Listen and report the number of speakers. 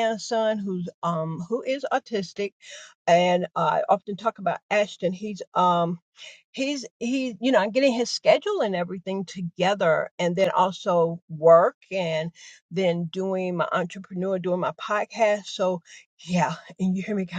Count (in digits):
1